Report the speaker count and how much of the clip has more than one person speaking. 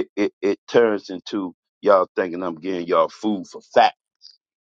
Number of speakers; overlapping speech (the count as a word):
one, no overlap